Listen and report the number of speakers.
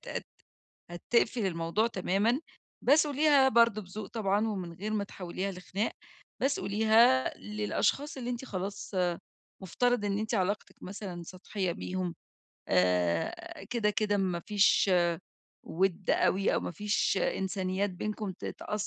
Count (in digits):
1